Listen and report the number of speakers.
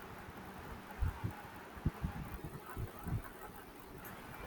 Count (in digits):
0